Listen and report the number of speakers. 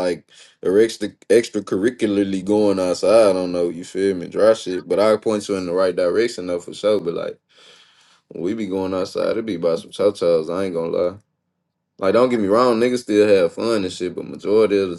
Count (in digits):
1